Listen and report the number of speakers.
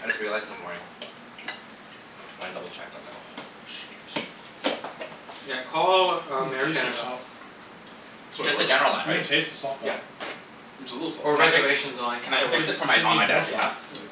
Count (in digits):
4